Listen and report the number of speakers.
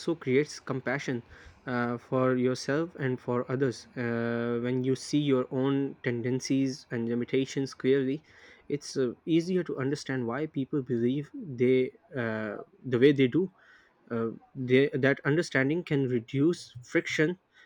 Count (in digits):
1